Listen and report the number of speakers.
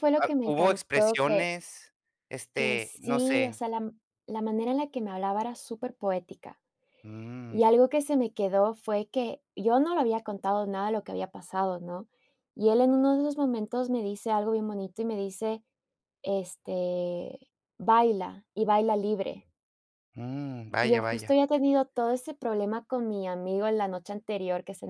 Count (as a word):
two